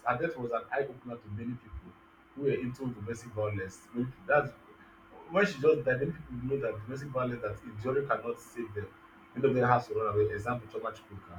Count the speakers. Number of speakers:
1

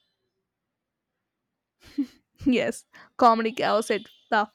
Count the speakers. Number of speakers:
1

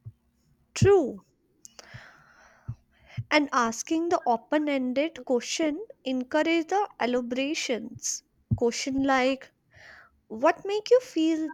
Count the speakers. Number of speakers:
1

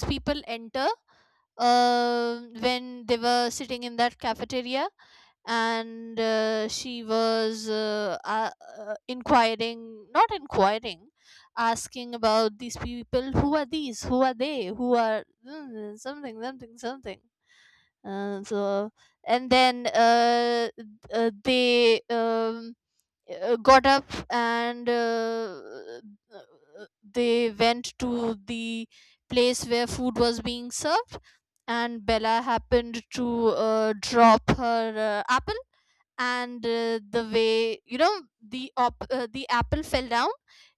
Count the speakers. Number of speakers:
1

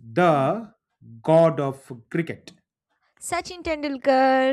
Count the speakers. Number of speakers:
2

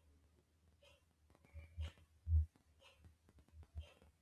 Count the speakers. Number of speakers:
0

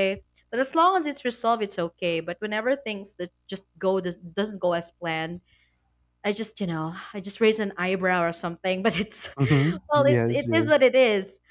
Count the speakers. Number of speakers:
2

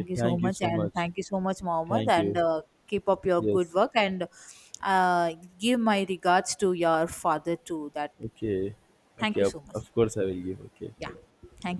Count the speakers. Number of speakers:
2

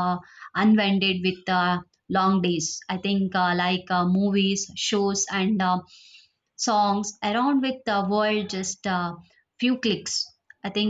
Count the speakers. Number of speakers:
1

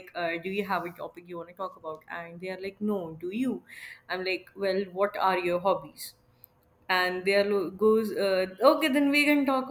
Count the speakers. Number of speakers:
1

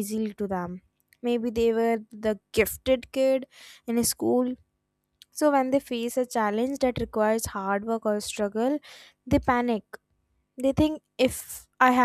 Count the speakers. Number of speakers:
1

